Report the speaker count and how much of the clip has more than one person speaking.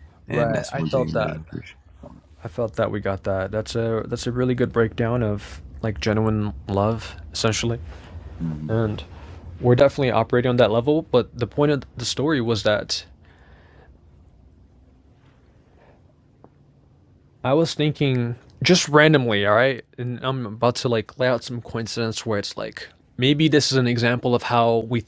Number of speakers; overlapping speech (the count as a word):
two, about 4%